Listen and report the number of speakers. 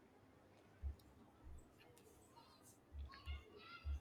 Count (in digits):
0